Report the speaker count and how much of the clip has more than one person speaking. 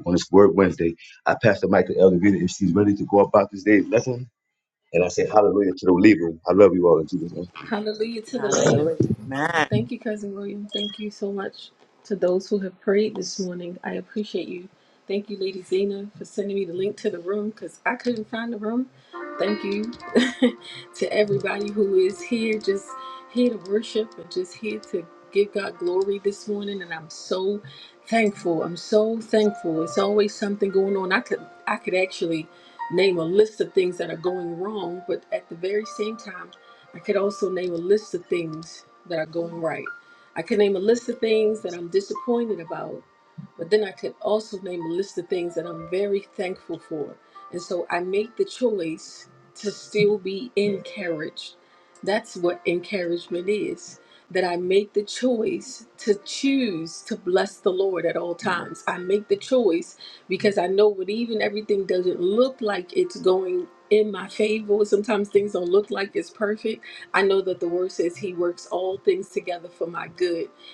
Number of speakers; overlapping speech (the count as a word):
three, about 1%